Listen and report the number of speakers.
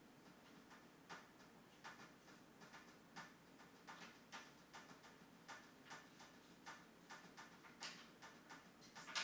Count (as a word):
zero